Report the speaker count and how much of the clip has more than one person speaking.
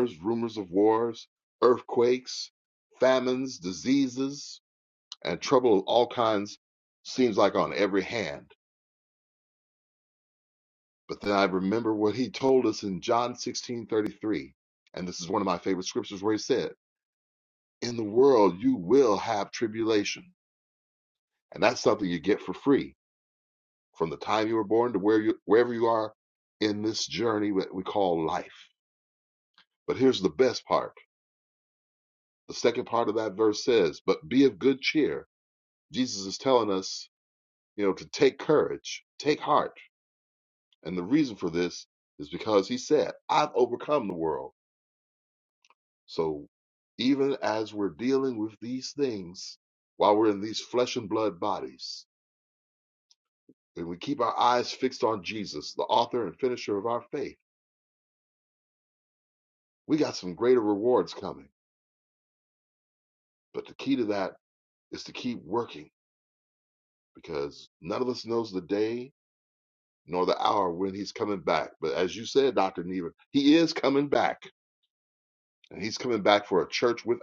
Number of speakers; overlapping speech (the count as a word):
one, no overlap